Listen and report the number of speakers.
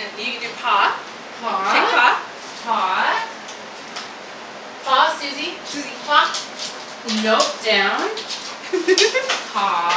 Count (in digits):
2